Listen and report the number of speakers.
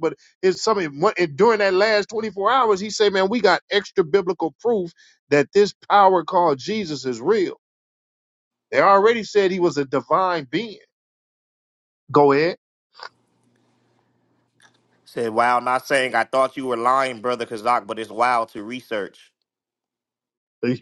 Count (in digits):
2